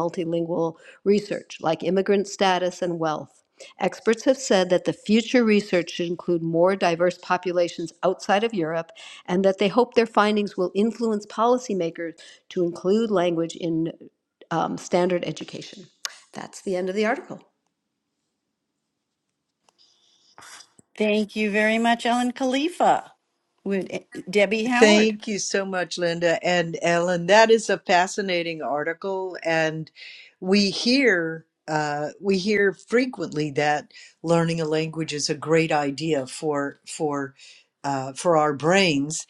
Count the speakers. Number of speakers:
3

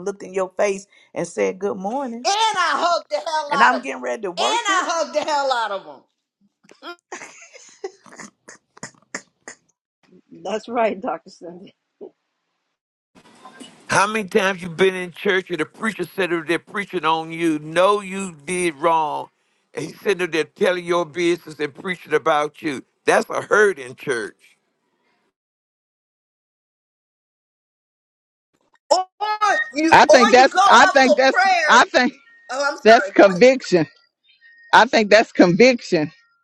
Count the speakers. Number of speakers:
5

